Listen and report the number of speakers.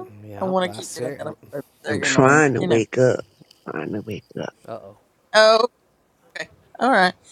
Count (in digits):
3